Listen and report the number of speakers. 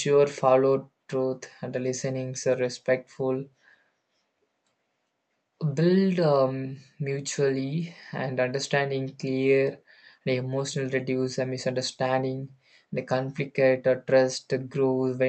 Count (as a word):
one